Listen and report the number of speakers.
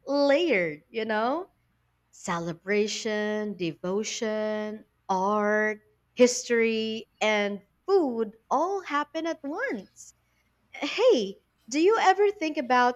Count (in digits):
1